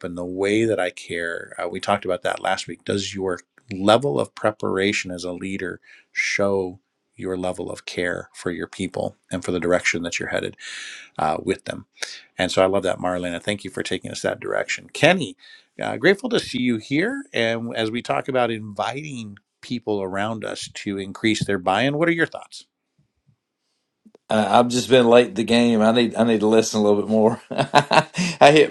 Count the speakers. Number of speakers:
2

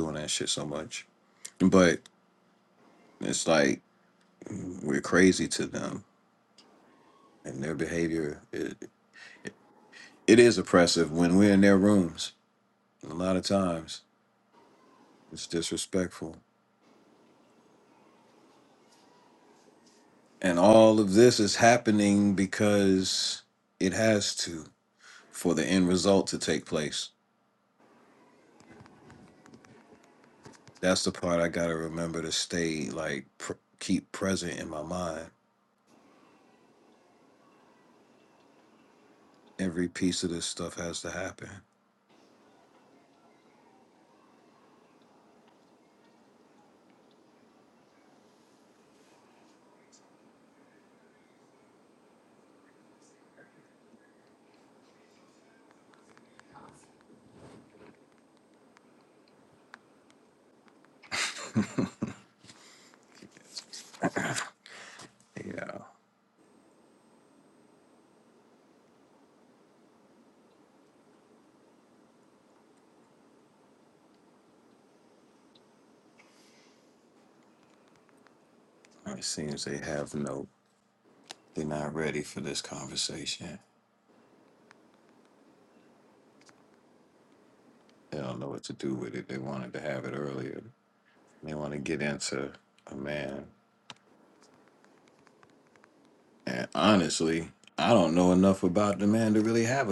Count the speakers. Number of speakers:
1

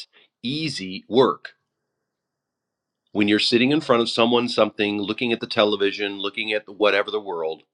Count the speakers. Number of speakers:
1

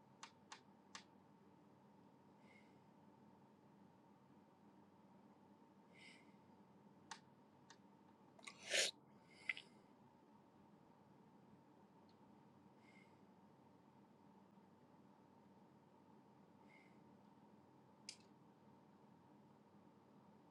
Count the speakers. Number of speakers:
0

